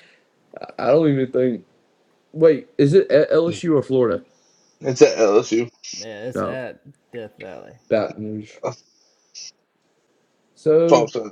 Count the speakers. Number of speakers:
3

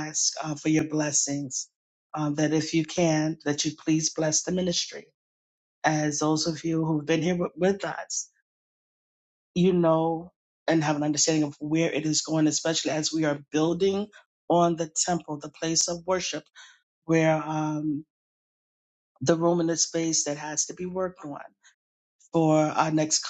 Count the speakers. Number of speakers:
1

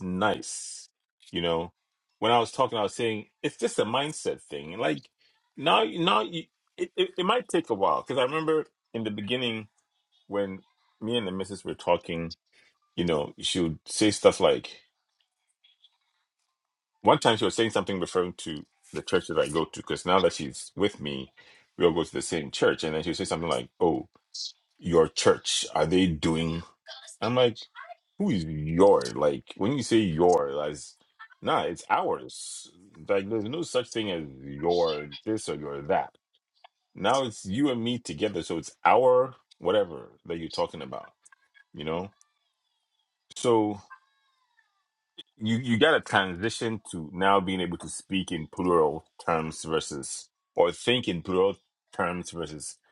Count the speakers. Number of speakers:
1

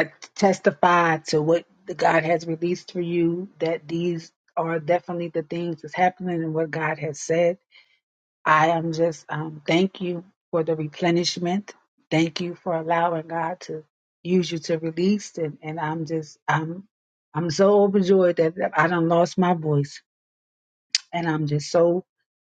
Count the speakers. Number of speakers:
1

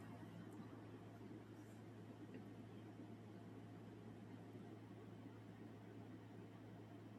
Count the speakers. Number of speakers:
0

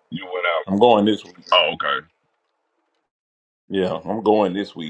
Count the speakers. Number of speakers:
2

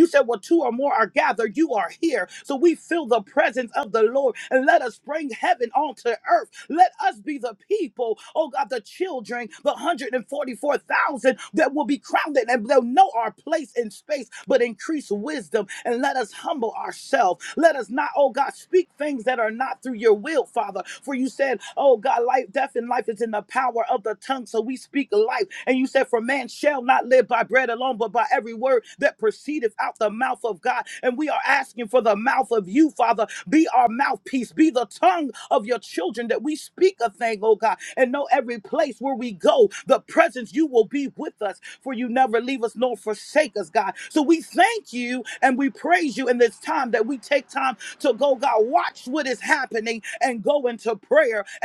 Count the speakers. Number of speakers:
1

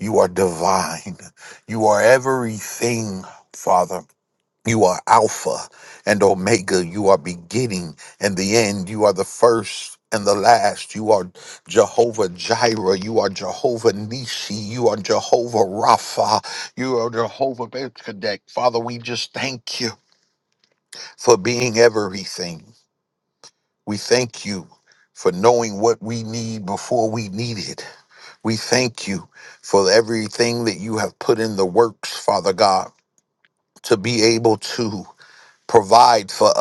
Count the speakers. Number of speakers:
1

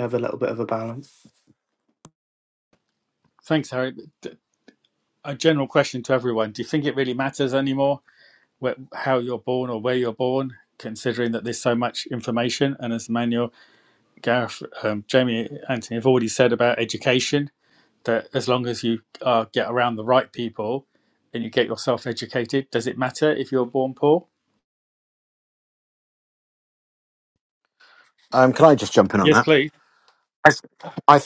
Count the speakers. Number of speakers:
3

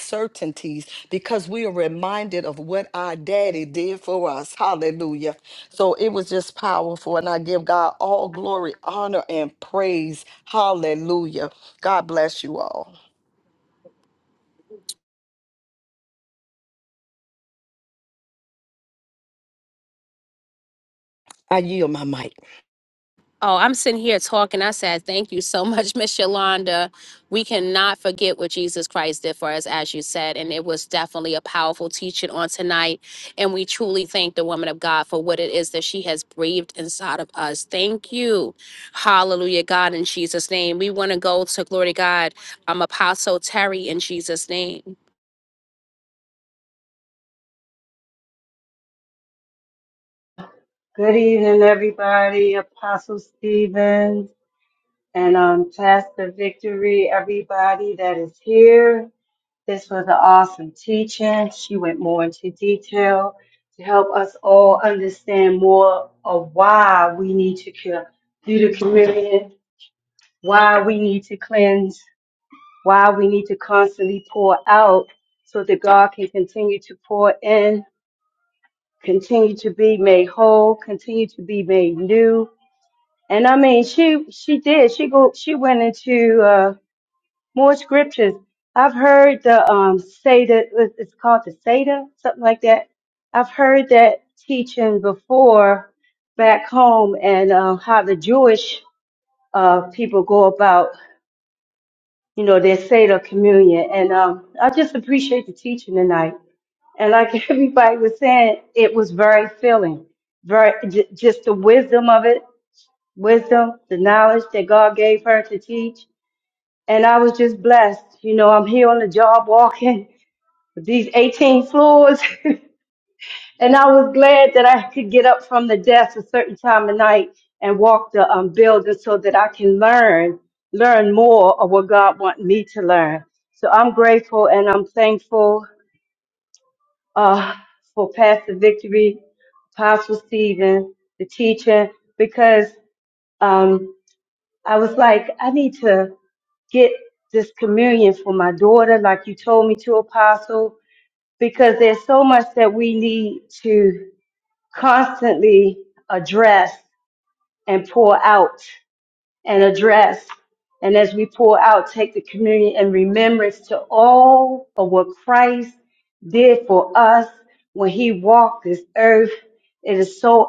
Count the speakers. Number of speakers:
3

